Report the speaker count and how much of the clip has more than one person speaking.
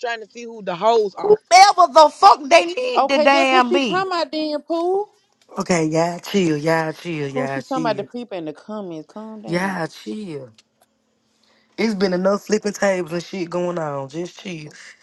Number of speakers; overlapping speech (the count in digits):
4, about 15%